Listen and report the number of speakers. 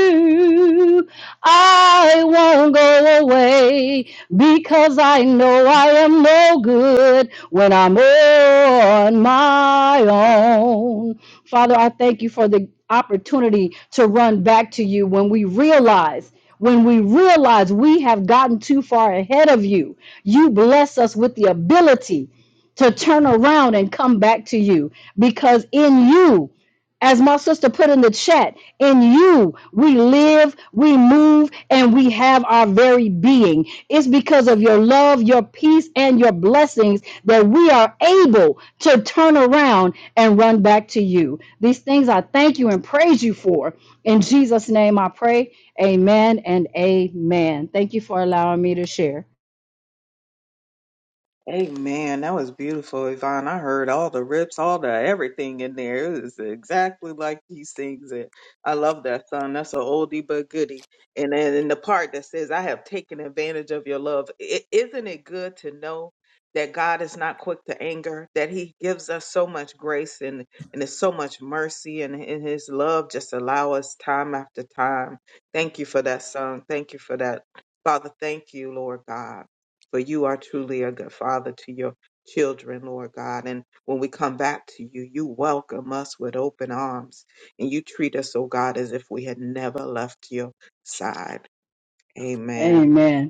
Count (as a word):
two